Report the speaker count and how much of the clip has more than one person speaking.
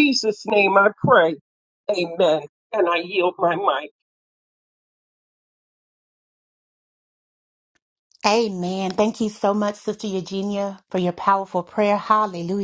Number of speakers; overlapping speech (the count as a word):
two, no overlap